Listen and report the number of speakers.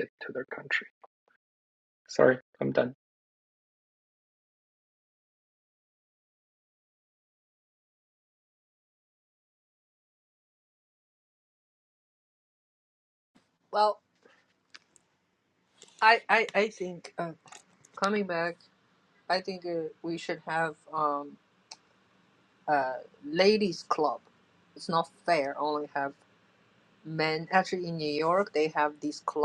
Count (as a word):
two